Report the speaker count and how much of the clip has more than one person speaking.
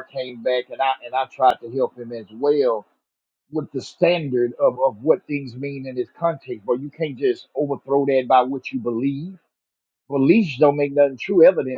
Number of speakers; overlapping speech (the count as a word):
one, no overlap